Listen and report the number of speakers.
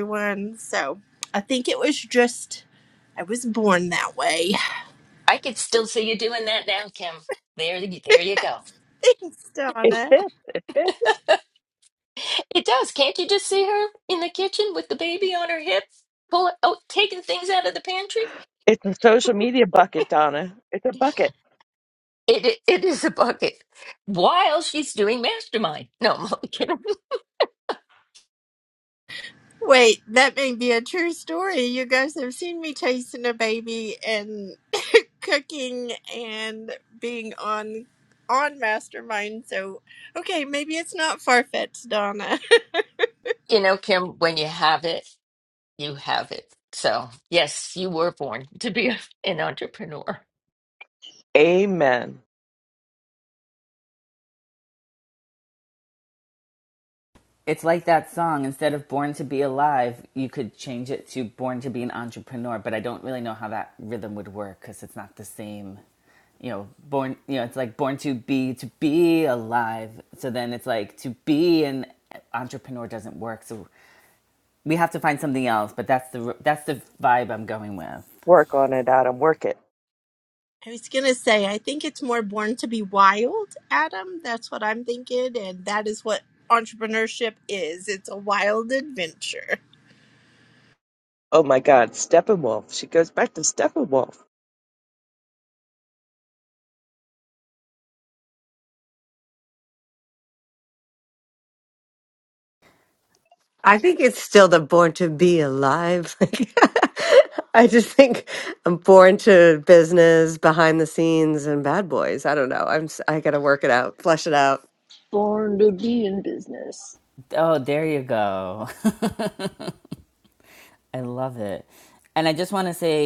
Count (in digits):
6